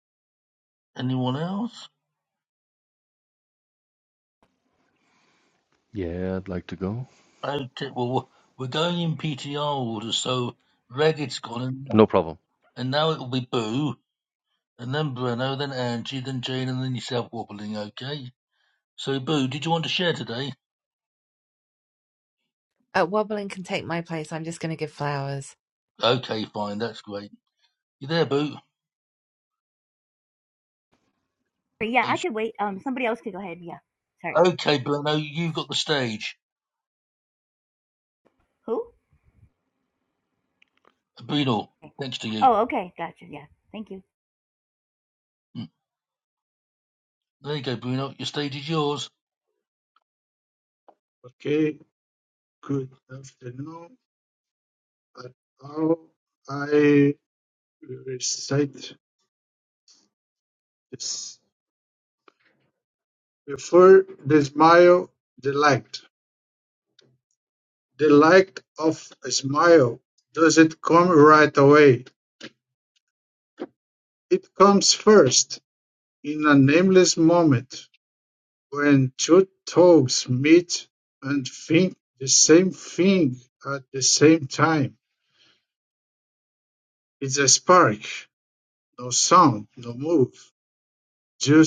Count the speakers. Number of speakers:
five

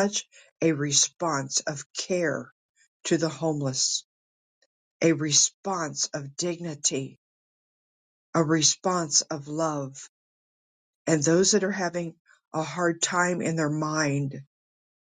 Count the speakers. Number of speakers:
one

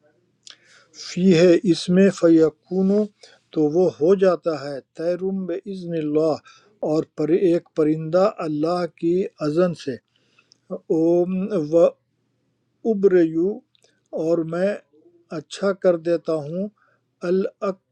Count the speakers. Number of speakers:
one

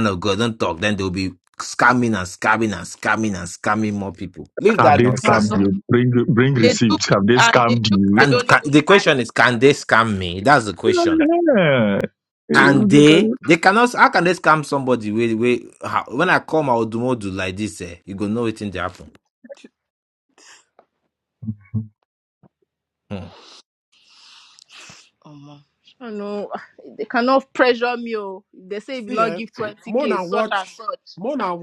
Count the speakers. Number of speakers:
four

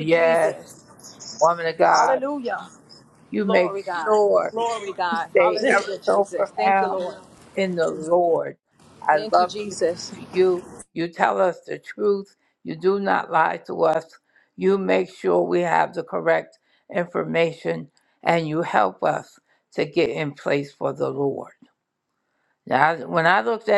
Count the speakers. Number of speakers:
two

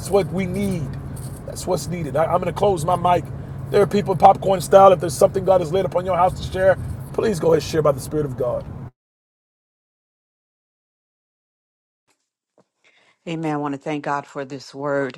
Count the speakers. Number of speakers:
two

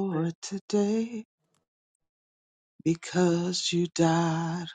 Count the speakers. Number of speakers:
one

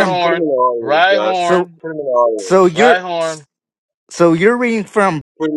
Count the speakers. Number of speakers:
three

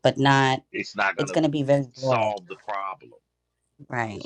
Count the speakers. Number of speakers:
two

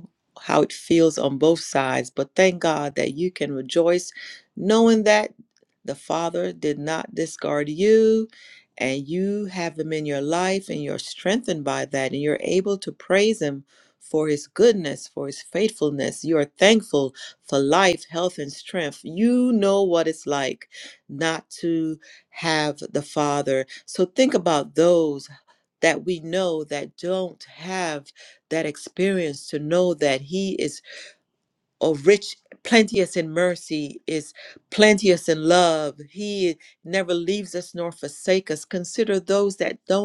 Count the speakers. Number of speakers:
one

